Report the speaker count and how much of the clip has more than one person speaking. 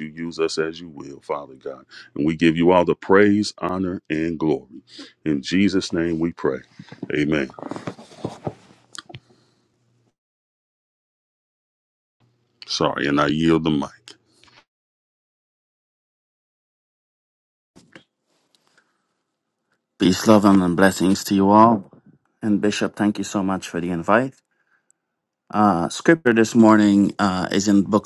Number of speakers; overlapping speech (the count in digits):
2, no overlap